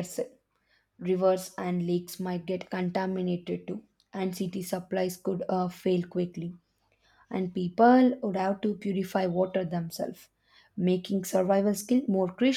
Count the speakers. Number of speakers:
1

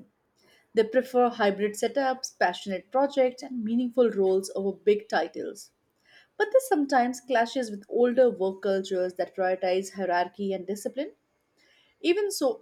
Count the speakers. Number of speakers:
1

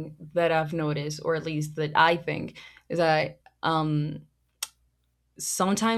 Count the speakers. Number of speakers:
1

